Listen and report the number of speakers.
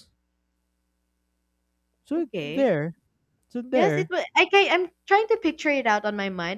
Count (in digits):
2